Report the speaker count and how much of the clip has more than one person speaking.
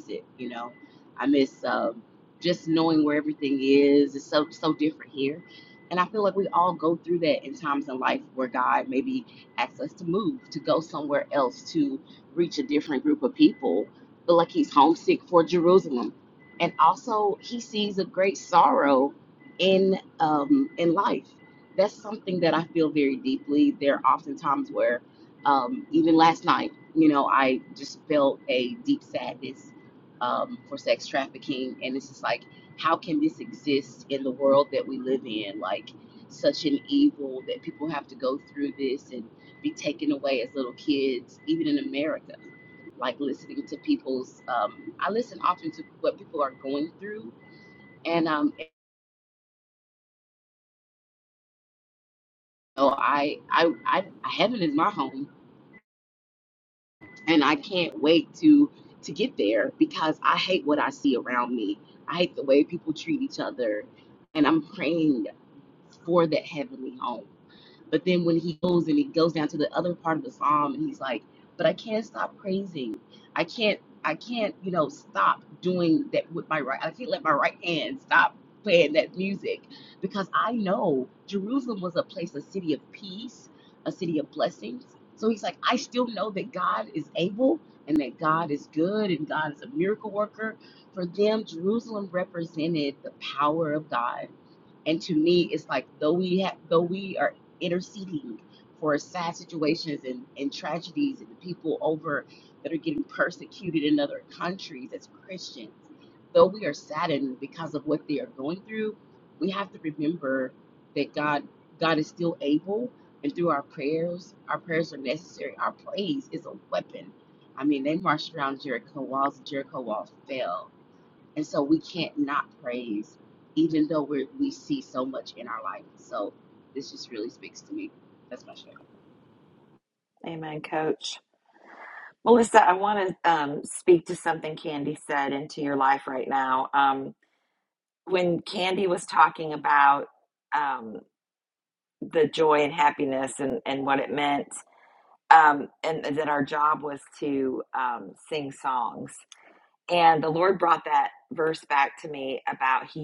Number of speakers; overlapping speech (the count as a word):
two, no overlap